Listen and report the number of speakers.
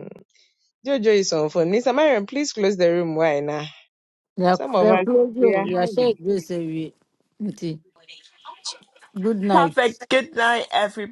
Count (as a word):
three